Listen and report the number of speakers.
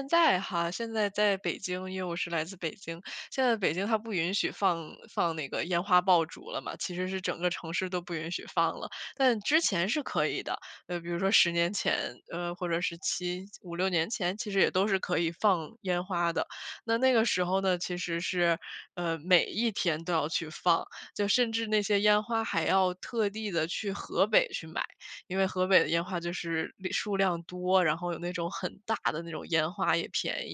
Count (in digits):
1